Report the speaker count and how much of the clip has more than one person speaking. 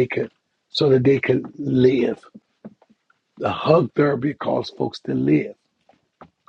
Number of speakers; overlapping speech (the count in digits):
1, no overlap